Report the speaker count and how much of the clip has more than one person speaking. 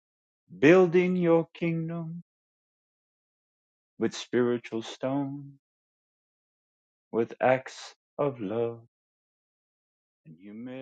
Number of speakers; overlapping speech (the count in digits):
1, no overlap